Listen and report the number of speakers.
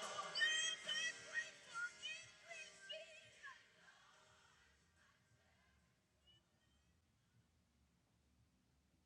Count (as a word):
zero